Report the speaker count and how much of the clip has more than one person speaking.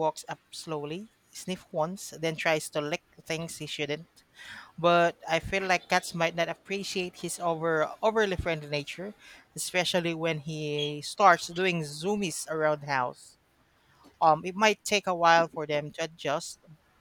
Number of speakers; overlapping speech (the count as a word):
one, no overlap